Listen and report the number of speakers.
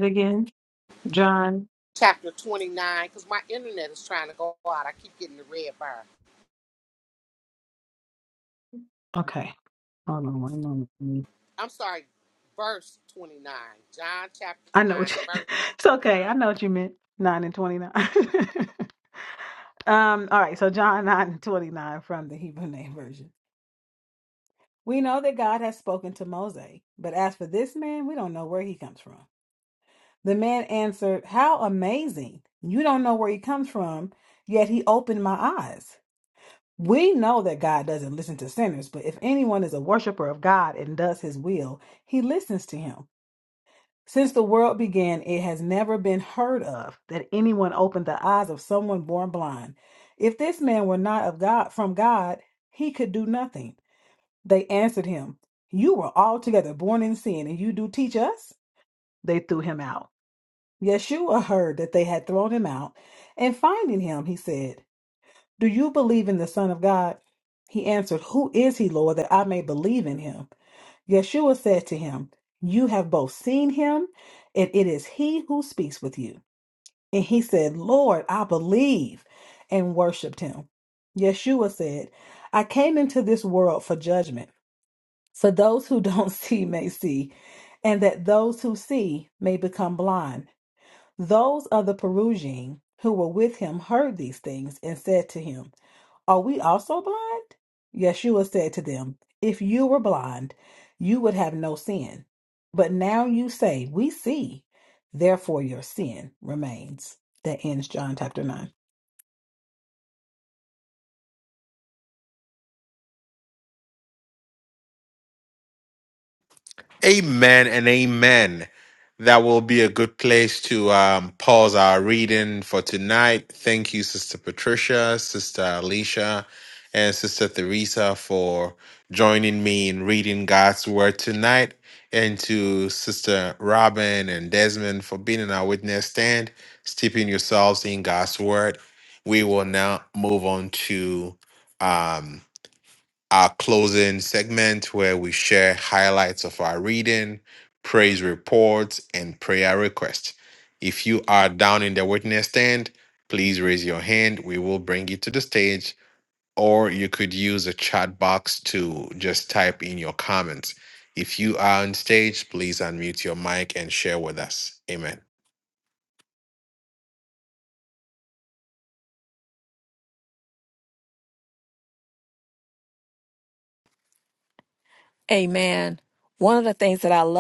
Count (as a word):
four